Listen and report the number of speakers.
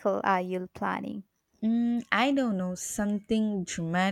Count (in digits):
2